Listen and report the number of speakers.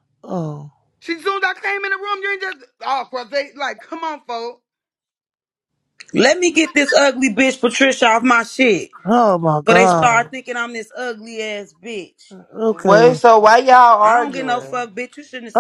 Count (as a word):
four